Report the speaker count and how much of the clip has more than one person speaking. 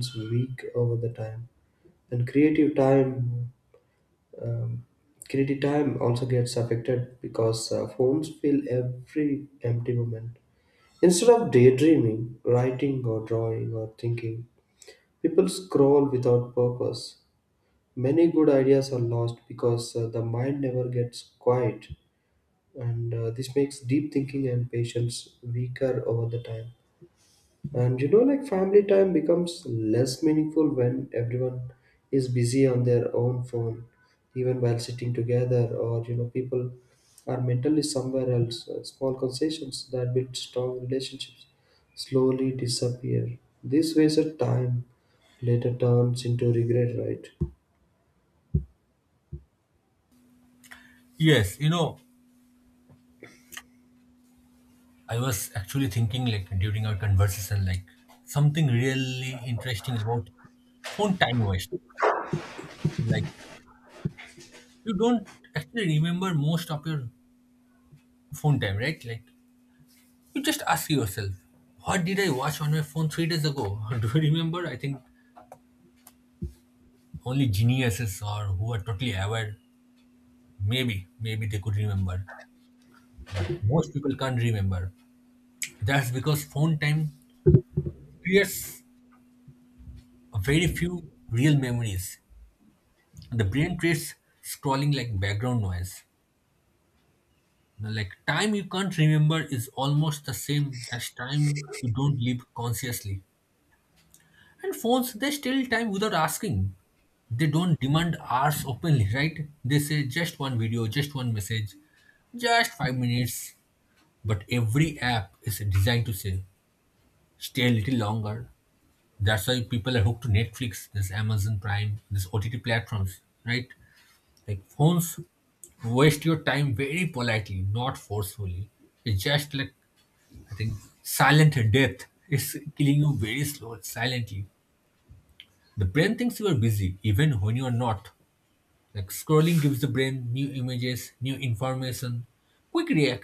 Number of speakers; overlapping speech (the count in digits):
2, no overlap